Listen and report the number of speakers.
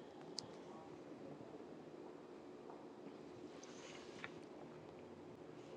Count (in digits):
0